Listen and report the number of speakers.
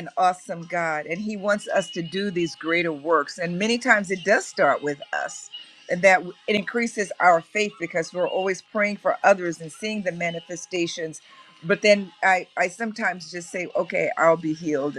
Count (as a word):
one